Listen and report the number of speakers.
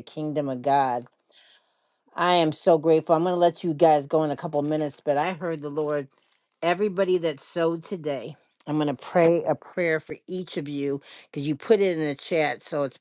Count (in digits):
1